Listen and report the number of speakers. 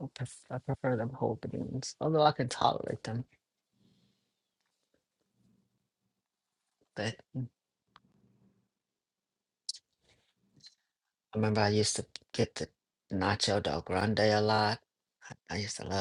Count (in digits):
1